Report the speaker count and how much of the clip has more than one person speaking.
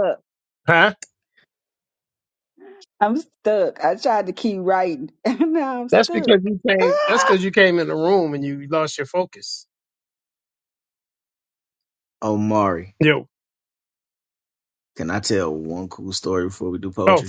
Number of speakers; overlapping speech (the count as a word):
three, about 4%